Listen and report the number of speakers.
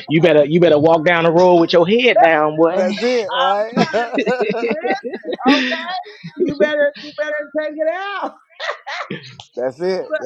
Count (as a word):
three